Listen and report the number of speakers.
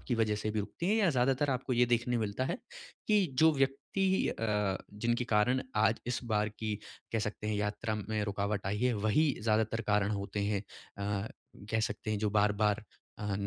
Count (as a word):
one